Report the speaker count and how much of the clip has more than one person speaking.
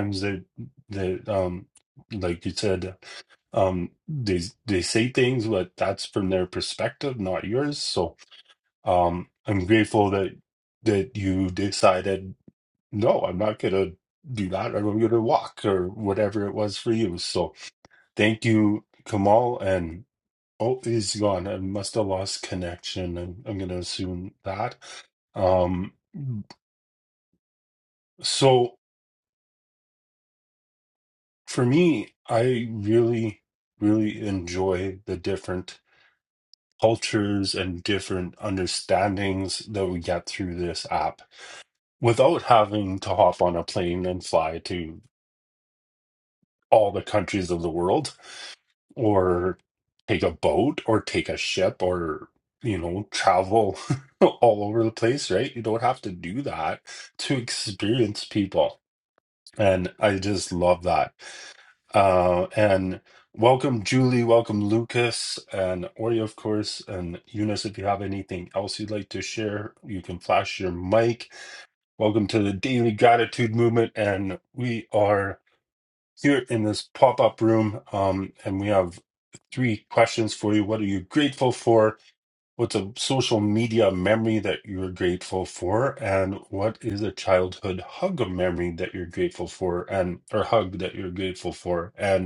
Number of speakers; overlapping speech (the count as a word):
one, no overlap